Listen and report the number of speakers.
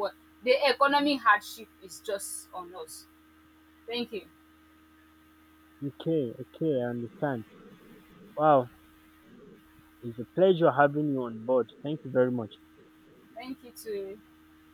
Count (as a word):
two